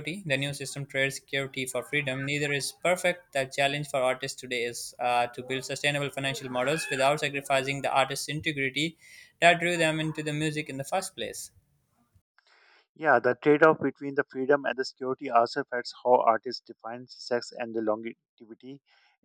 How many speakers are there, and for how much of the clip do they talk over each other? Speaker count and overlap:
2, no overlap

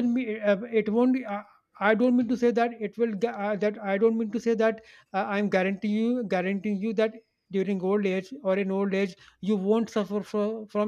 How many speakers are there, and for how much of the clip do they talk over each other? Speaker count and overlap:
1, no overlap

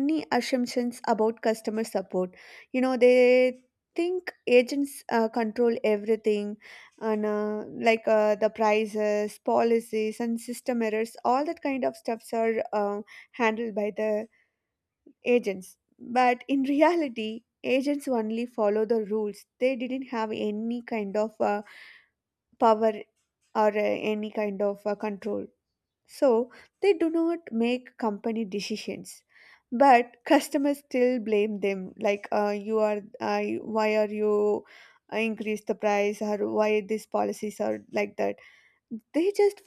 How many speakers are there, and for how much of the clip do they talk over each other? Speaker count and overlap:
1, no overlap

